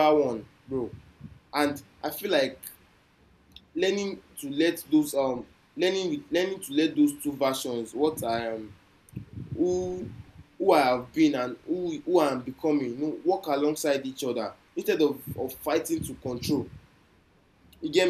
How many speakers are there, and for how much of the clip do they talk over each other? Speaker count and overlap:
1, no overlap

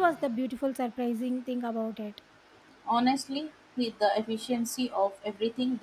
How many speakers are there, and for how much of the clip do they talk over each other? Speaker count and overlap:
2, no overlap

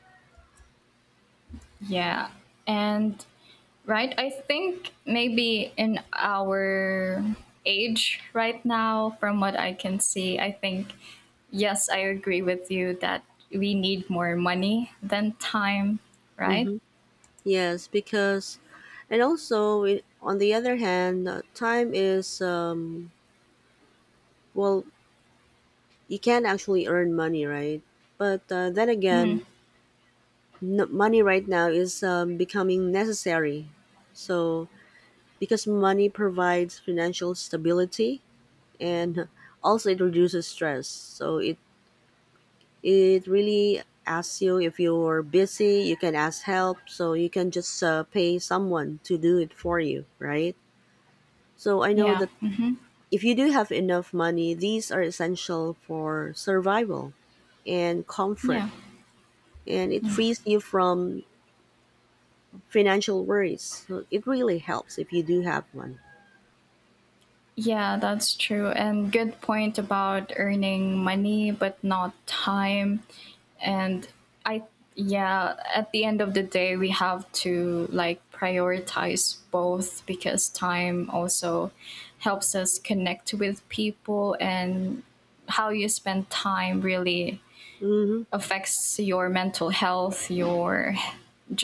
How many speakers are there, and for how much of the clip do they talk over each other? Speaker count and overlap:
2, about 1%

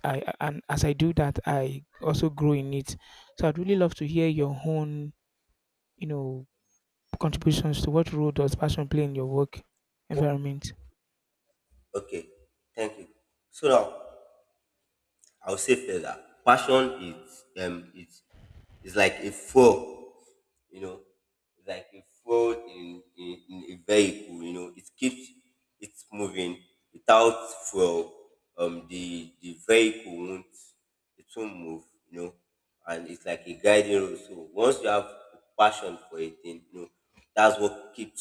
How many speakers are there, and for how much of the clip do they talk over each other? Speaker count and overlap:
2, no overlap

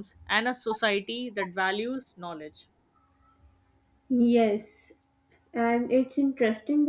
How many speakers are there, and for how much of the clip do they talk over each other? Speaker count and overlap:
2, no overlap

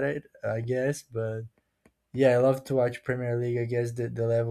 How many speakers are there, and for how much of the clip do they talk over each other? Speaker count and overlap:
1, no overlap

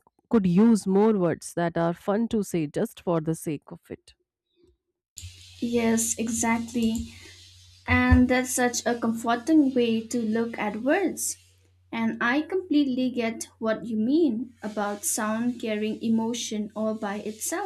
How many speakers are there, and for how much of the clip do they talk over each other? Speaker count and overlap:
2, no overlap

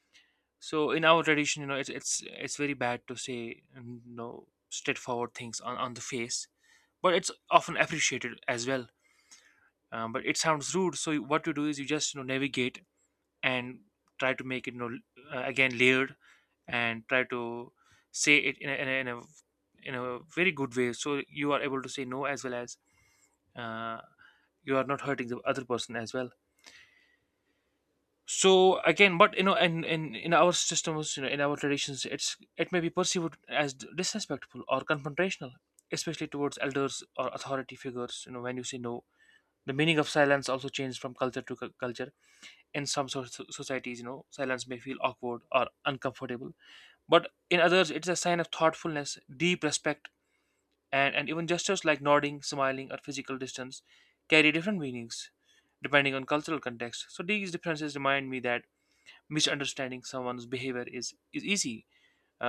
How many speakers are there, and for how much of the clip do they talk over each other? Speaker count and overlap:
1, no overlap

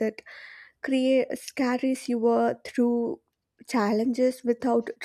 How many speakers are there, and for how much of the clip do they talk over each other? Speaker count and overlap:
1, no overlap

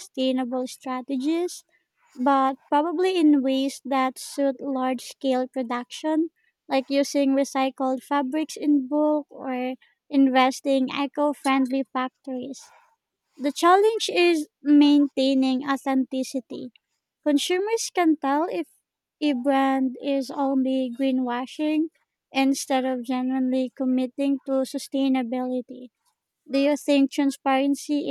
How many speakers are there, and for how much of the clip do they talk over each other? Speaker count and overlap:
1, no overlap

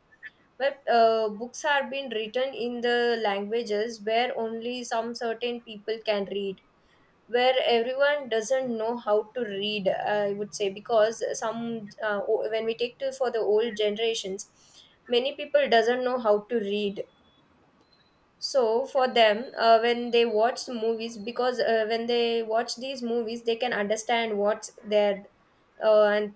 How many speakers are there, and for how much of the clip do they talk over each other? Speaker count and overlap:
1, no overlap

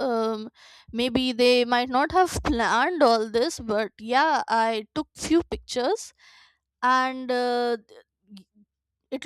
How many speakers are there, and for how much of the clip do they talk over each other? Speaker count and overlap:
1, no overlap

